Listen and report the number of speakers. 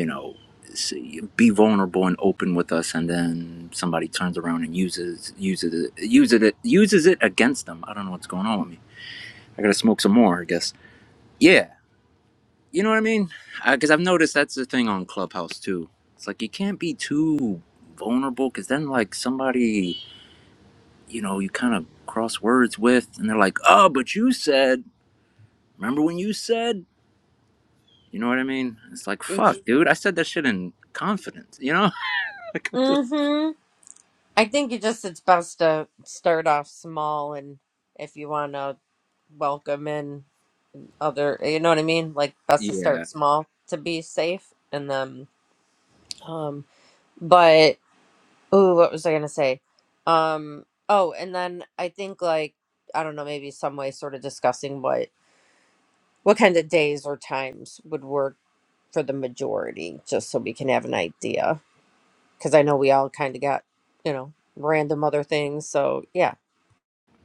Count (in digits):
2